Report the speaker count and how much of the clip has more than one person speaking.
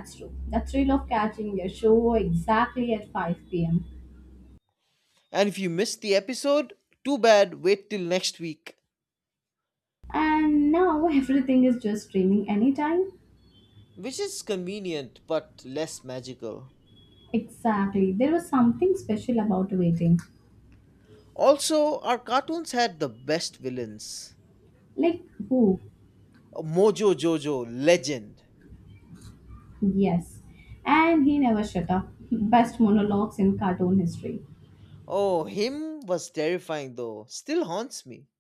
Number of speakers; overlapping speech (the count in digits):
2, no overlap